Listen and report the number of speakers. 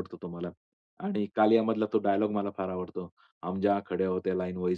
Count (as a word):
one